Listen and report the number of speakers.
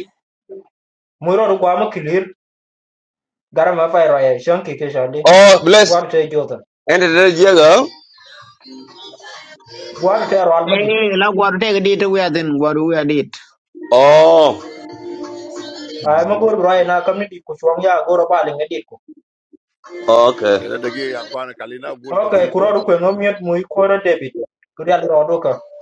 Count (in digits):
4